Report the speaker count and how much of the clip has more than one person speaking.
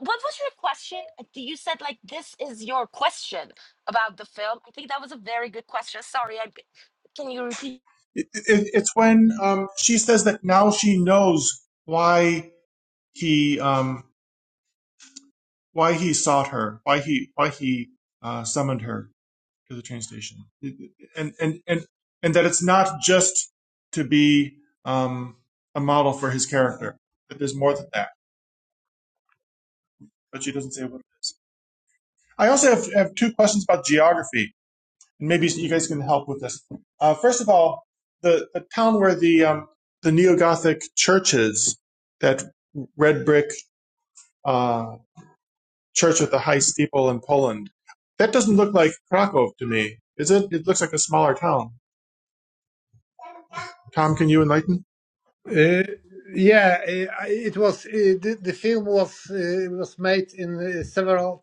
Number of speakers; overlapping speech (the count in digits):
3, no overlap